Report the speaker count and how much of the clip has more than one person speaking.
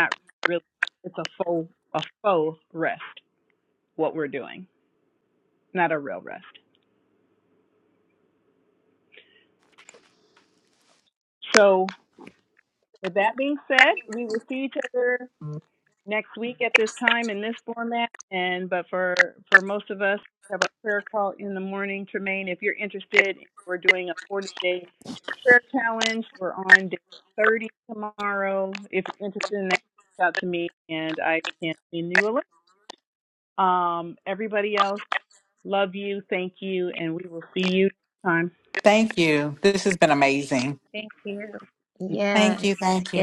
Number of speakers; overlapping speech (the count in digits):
3, about 1%